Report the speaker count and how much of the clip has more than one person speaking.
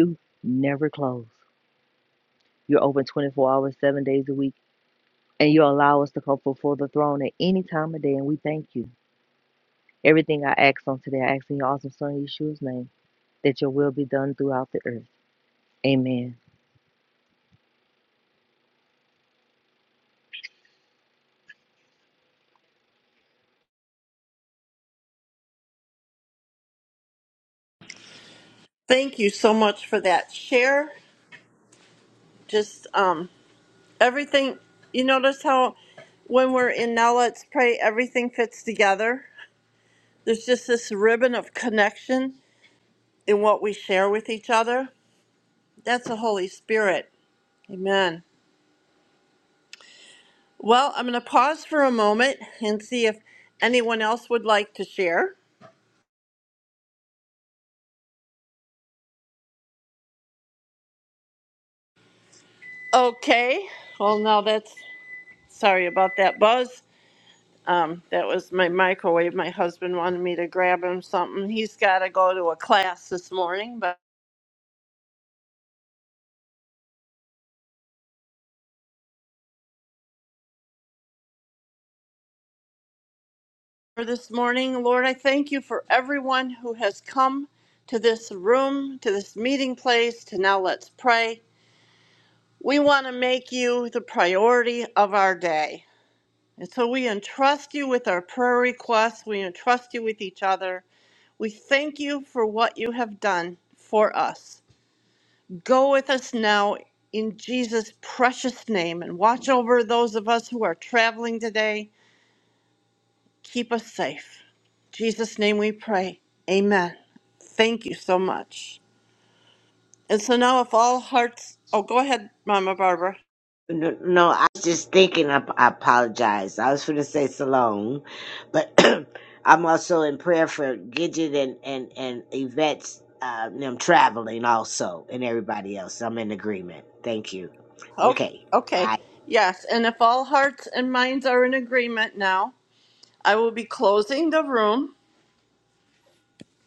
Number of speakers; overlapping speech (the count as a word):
three, under 1%